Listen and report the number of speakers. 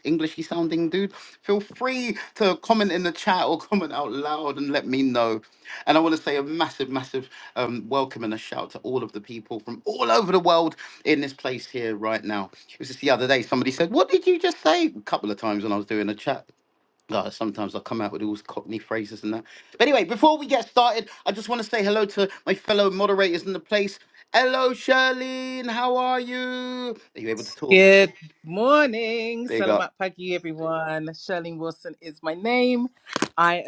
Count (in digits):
2